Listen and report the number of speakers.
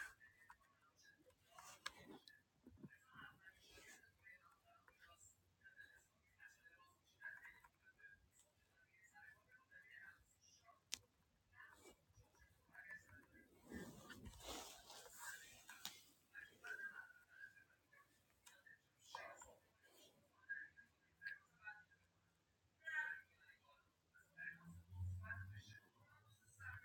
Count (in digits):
0